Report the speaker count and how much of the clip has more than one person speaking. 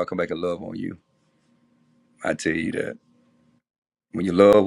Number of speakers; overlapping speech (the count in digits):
1, no overlap